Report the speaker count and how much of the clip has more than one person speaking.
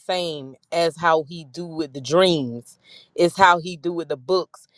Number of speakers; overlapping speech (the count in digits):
1, no overlap